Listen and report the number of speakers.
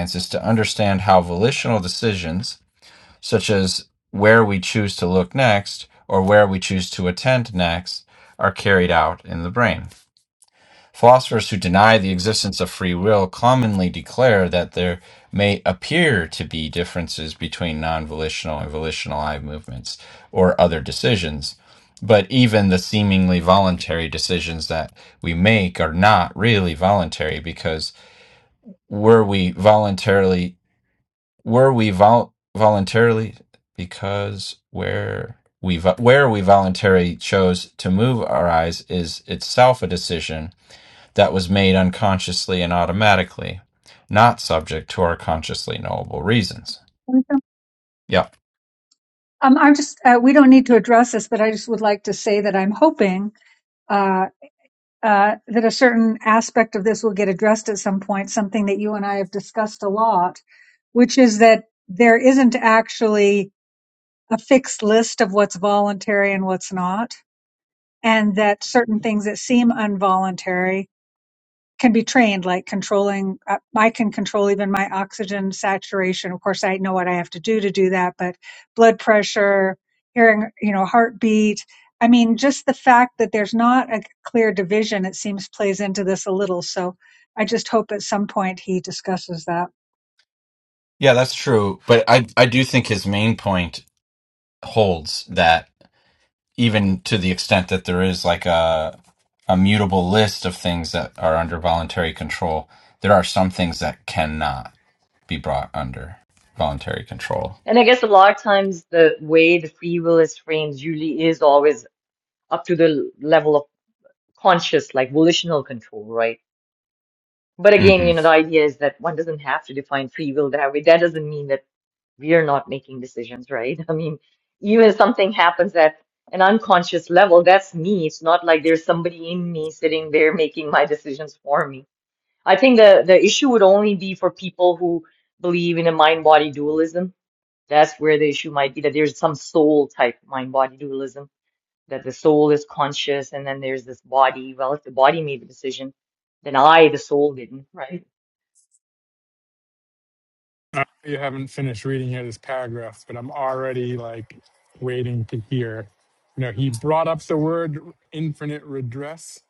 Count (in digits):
4